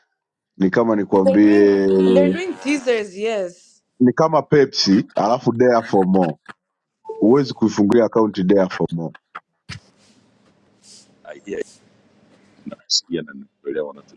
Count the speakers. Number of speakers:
3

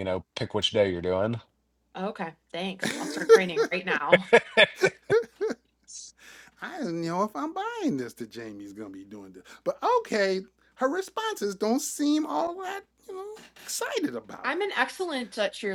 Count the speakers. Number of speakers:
3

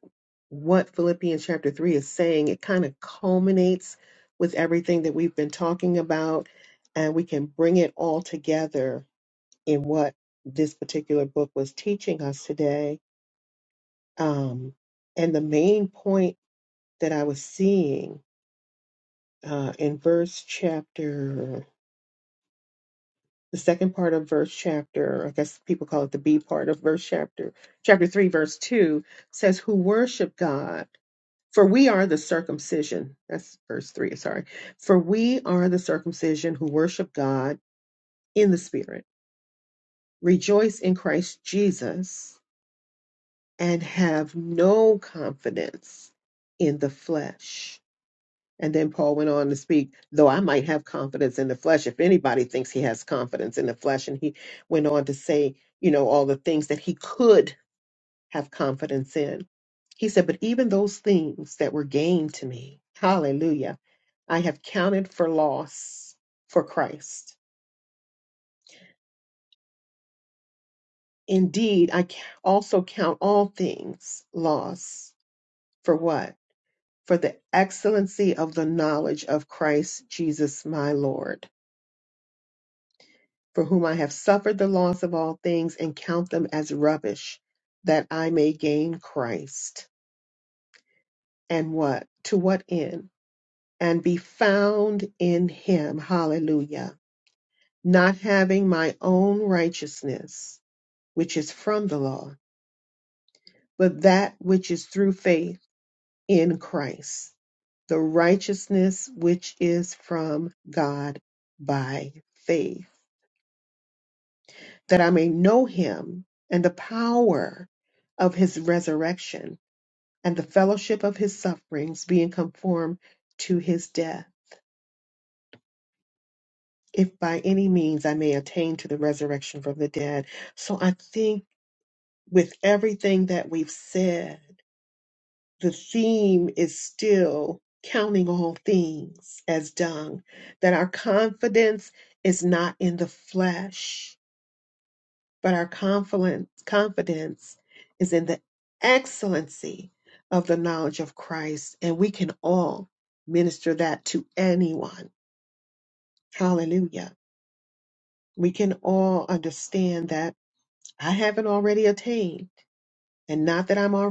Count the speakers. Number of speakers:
1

